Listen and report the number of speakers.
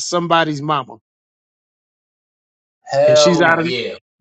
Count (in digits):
2